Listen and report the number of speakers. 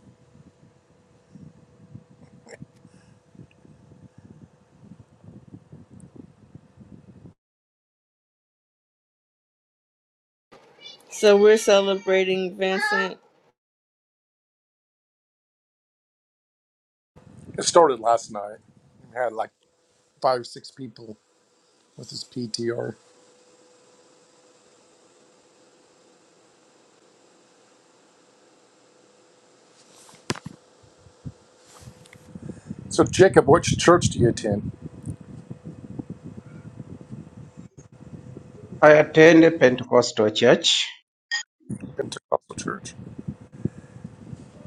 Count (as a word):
three